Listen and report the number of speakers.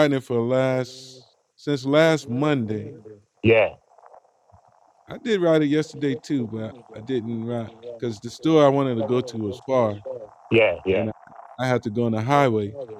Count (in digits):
2